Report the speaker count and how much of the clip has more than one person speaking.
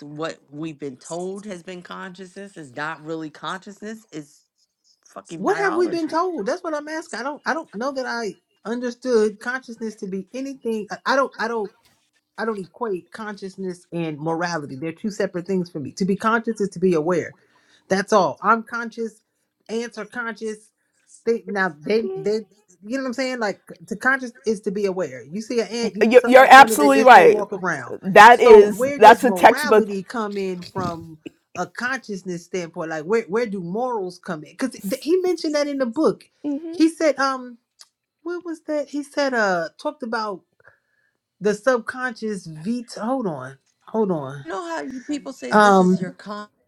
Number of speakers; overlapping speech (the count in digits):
3, about 9%